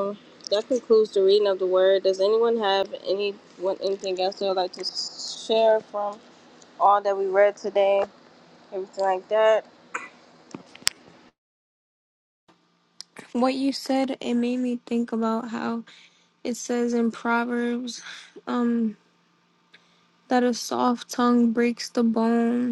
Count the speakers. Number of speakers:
2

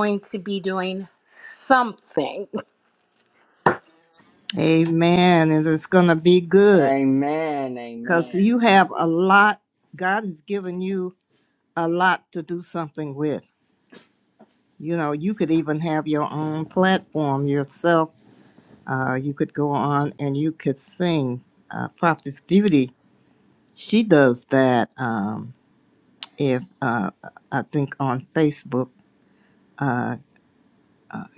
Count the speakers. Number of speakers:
3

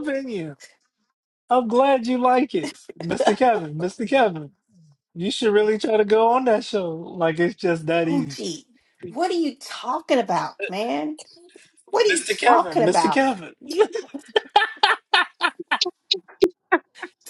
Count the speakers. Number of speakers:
2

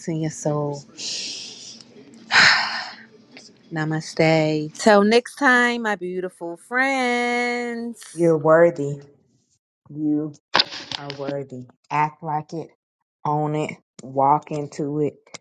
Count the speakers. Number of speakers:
2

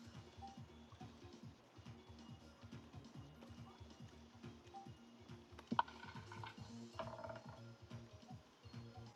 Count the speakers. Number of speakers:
0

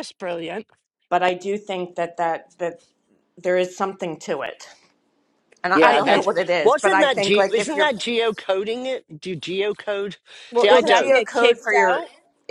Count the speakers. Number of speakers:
3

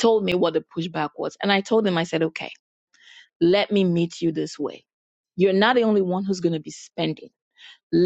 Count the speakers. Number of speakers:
1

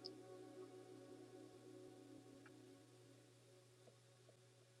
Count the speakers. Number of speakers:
0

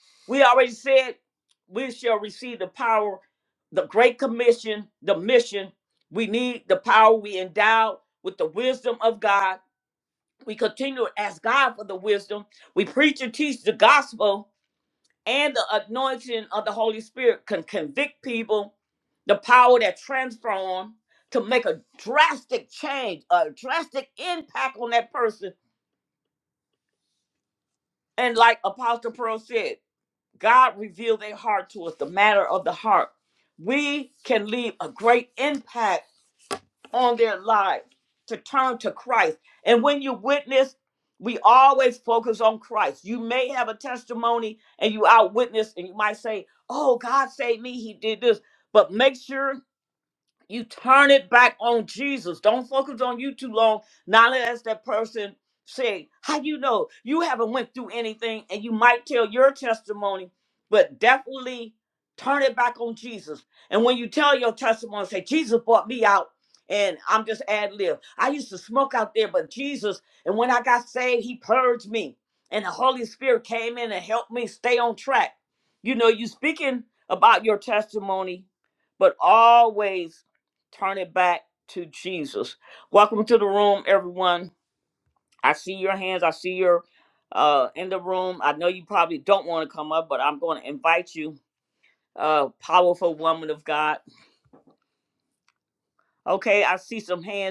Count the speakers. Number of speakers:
1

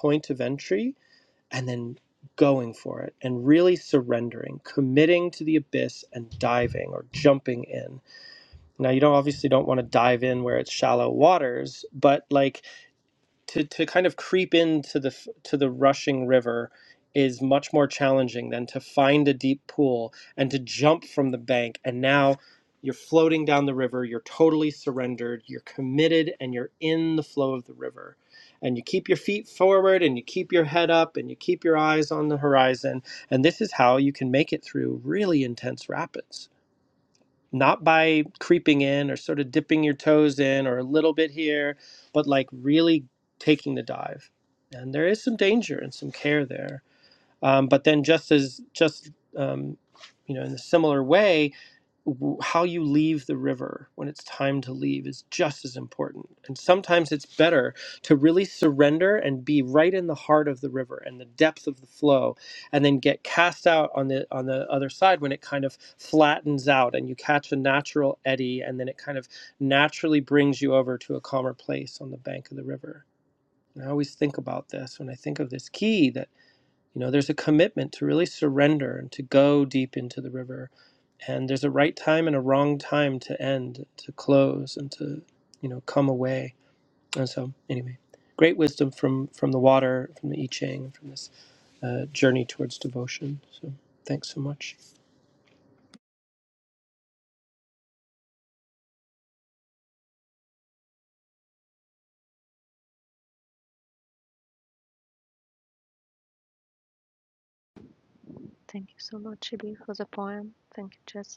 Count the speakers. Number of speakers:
2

